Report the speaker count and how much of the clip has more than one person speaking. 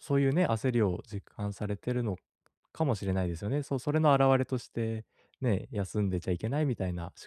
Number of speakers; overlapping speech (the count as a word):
one, no overlap